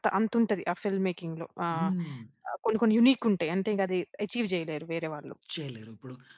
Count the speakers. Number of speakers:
2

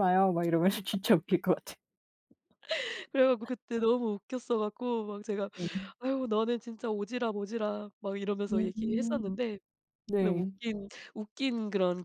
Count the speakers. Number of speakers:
2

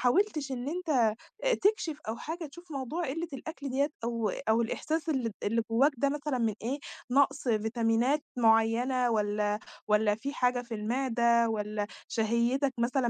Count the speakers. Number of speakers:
1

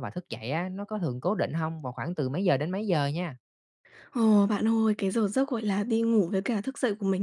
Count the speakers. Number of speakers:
2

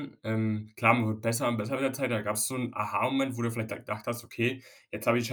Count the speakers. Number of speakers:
1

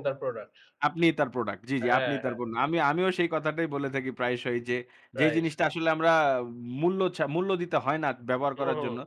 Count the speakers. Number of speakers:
2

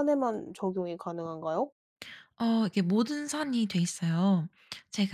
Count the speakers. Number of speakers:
2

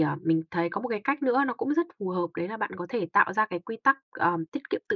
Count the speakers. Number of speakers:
1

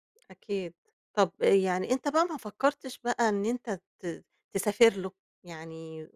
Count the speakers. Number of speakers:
1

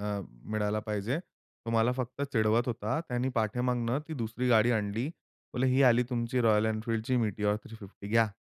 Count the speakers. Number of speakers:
1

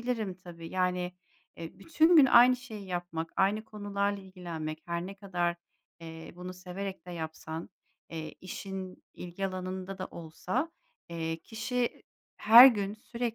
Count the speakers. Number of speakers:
1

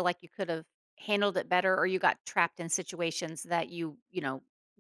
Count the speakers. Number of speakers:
1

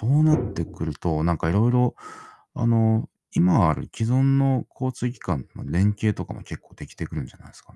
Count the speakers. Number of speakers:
1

